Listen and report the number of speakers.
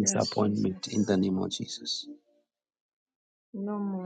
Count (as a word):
two